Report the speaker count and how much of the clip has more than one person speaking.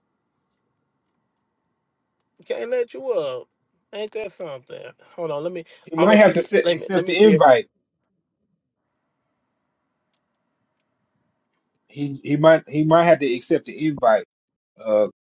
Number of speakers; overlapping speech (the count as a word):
two, about 10%